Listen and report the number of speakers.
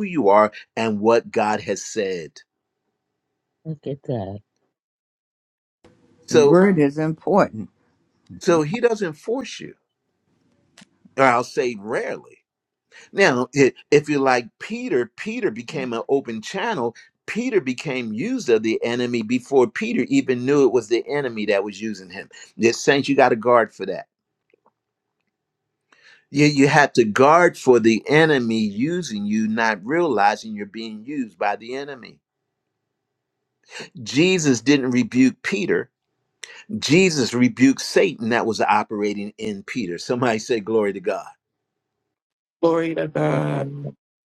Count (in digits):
4